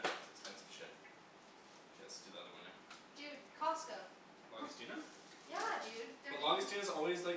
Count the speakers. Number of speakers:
2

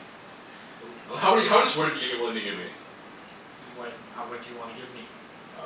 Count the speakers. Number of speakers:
2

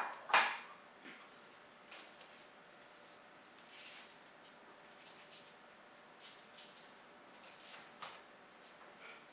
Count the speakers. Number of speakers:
0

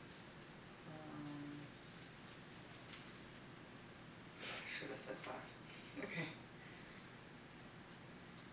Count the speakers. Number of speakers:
1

